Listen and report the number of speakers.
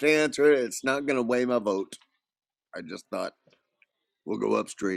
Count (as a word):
one